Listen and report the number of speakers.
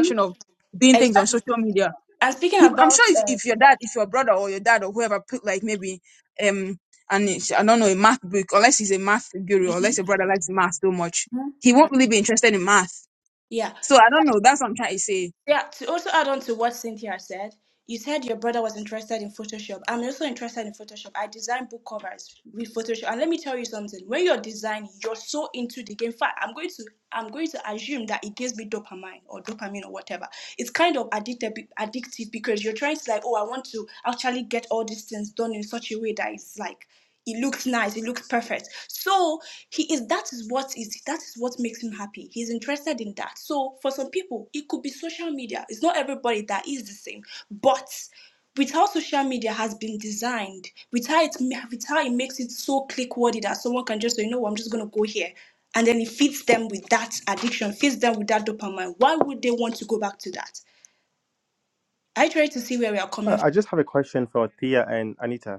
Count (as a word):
three